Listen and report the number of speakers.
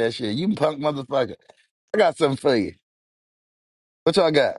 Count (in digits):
1